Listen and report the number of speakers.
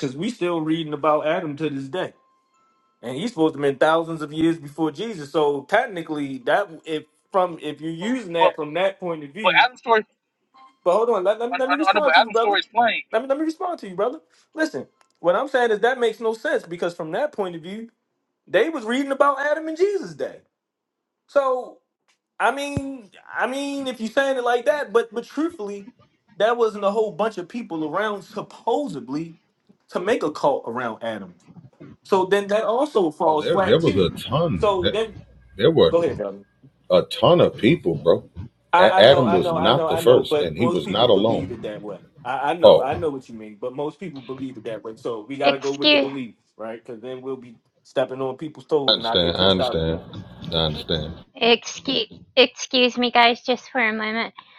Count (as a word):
four